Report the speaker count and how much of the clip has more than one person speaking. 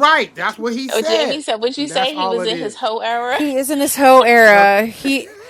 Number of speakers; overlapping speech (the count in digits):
3, about 33%